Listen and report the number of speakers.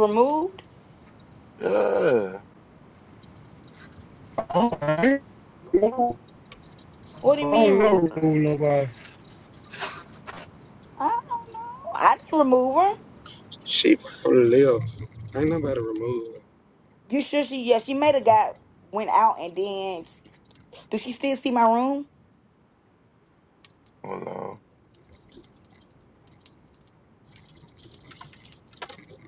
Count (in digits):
4